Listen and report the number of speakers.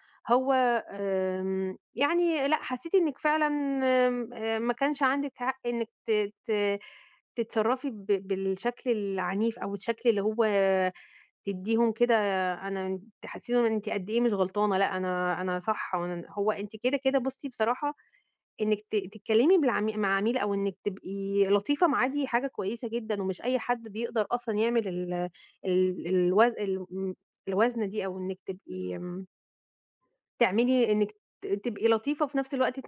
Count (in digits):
1